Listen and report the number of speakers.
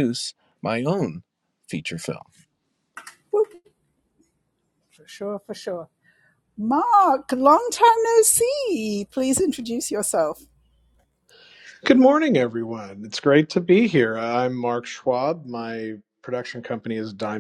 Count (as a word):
three